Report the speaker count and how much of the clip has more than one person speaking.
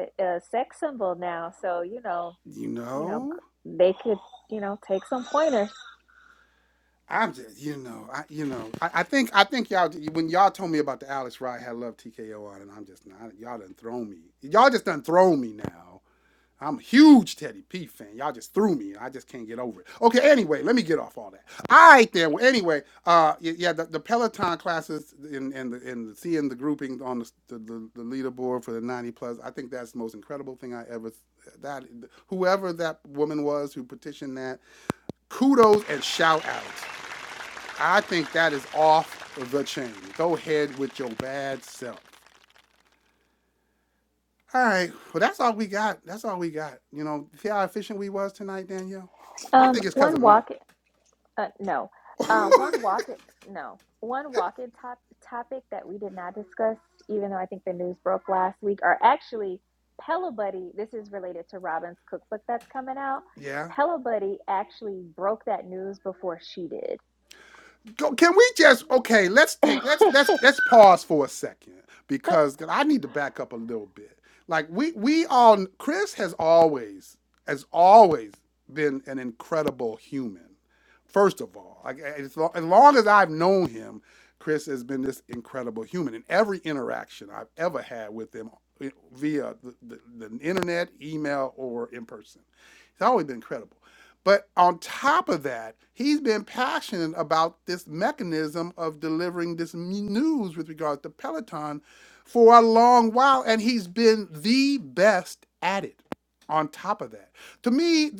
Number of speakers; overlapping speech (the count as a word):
two, about 1%